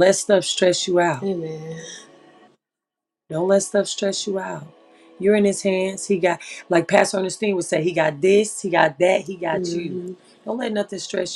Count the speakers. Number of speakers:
two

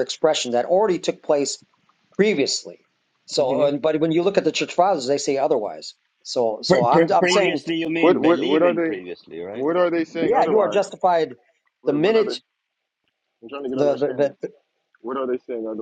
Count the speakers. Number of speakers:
three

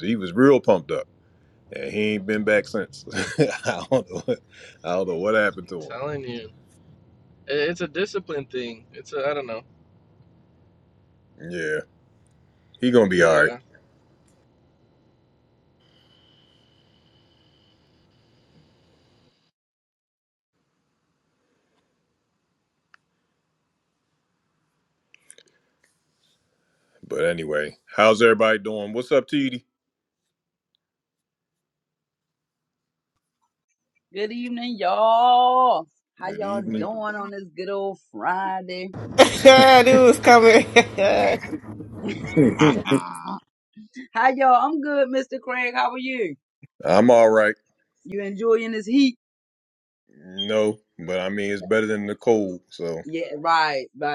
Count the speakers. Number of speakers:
four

